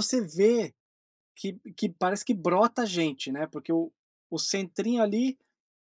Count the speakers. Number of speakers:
one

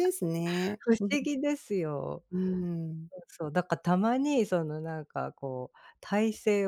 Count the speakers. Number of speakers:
two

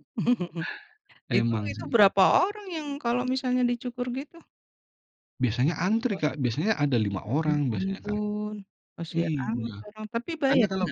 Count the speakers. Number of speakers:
two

